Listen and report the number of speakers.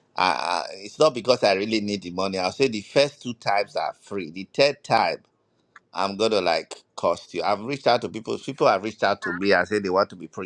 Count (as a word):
one